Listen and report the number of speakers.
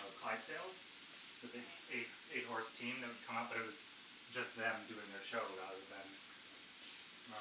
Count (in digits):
1